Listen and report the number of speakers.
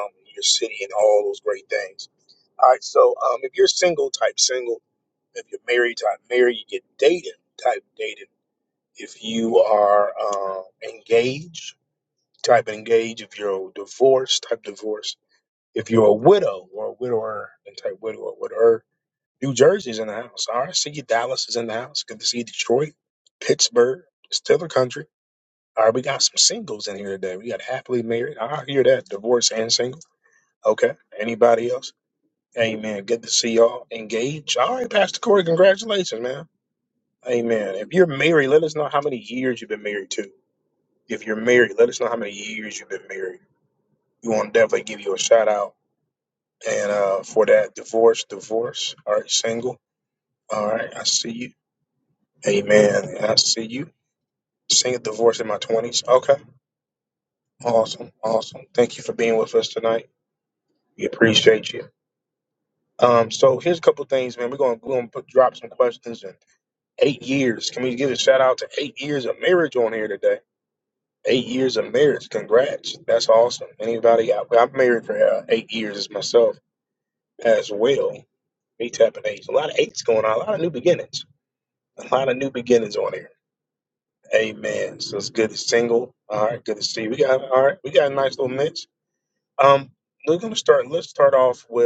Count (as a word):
one